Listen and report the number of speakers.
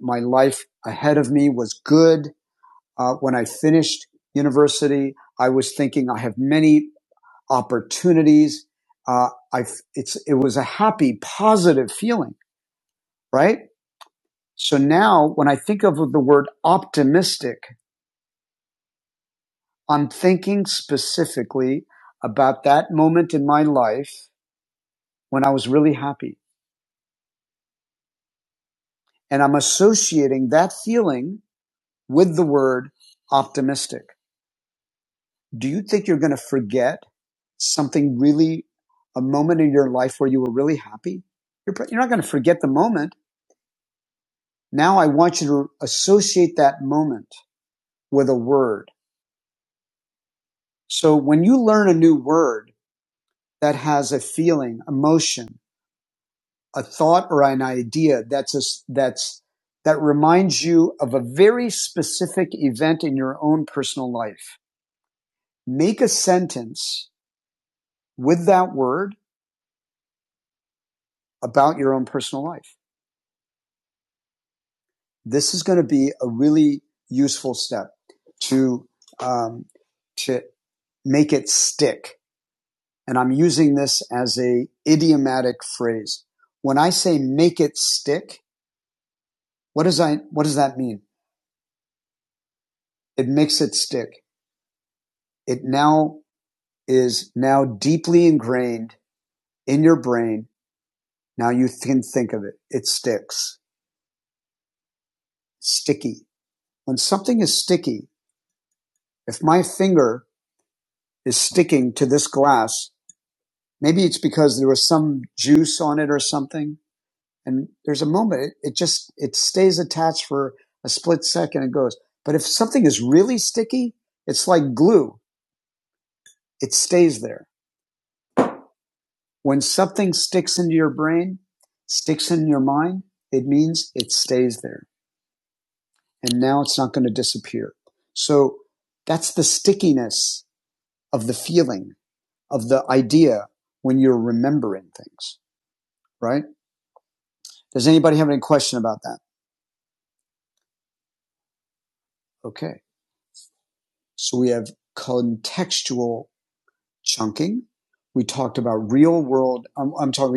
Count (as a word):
one